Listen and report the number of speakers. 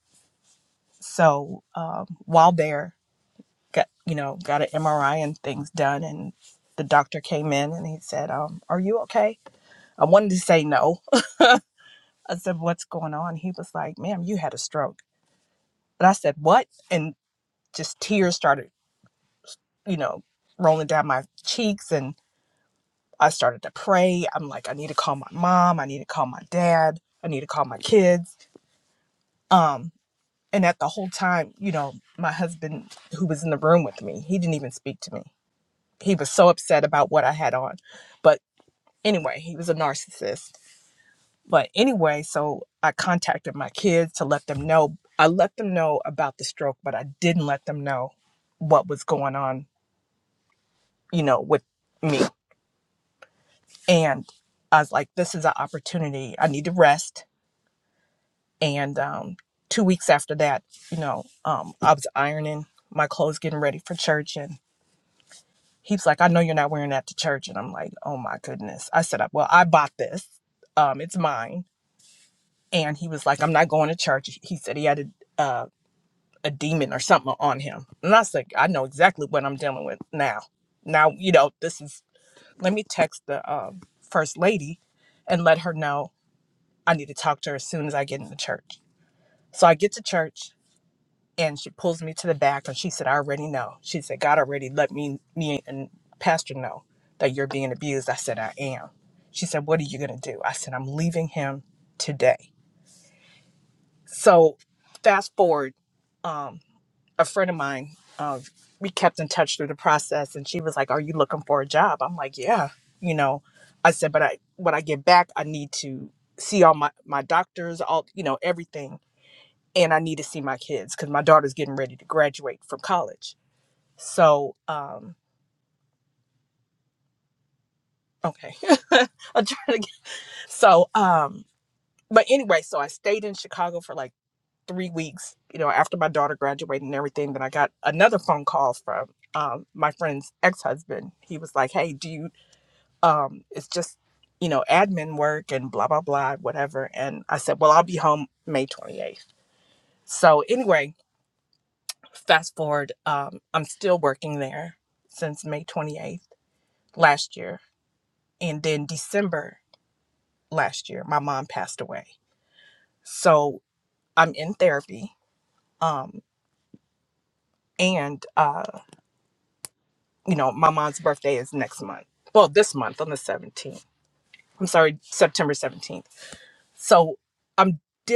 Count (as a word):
one